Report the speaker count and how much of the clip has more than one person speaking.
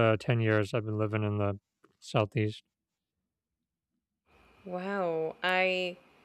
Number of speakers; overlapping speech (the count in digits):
2, no overlap